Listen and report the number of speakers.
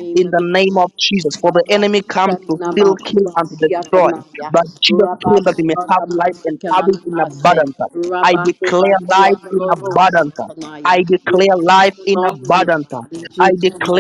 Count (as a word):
two